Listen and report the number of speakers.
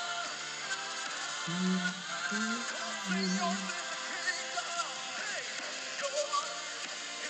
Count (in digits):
0